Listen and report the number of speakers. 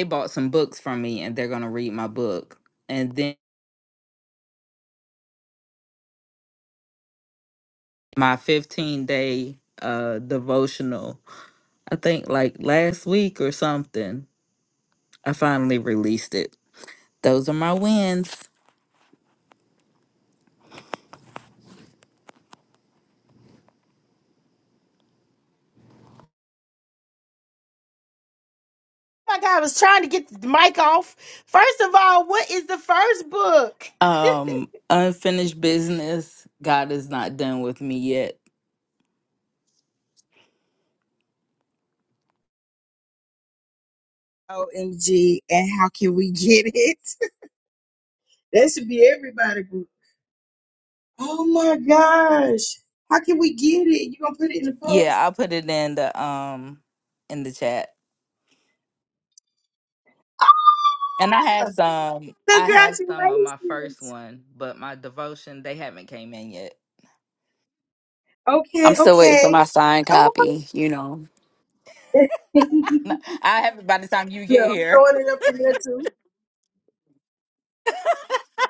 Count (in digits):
3